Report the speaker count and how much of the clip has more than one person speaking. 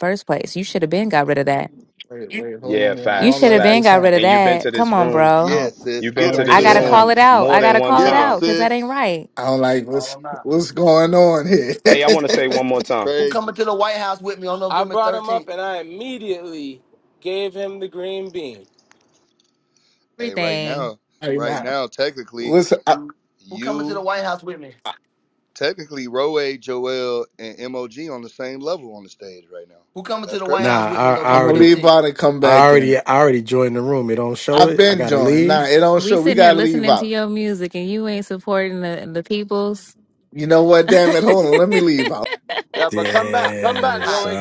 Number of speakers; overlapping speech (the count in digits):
7, about 33%